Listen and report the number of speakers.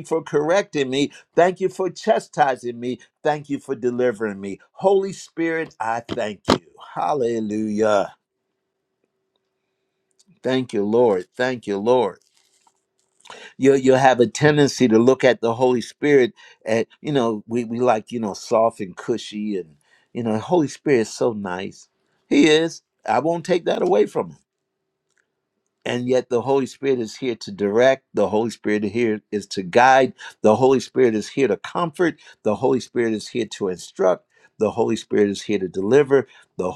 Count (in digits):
1